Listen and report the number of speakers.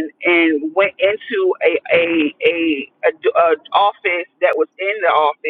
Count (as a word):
one